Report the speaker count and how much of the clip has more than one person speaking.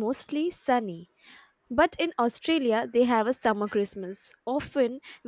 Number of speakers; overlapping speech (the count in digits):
1, no overlap